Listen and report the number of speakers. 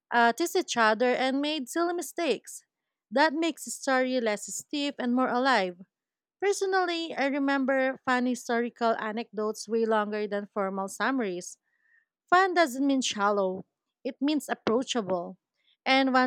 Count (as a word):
one